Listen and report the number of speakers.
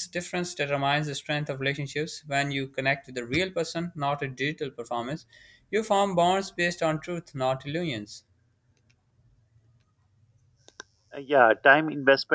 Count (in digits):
2